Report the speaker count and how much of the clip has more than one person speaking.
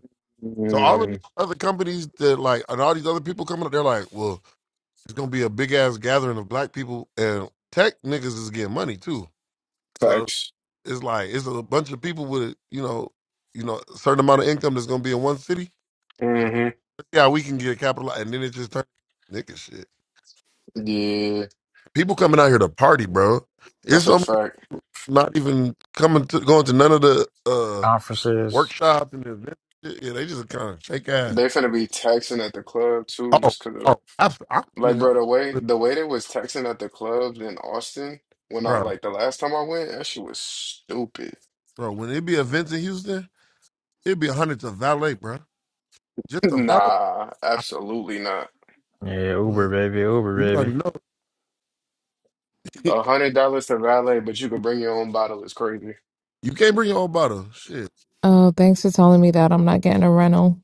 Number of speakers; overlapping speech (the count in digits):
4, about 6%